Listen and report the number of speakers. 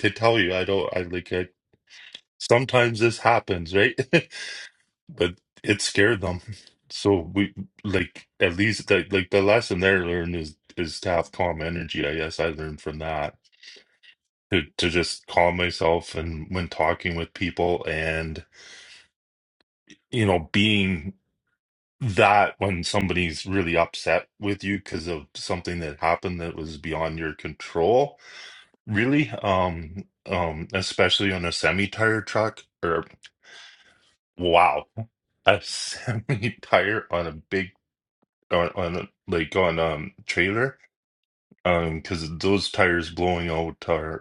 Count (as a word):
one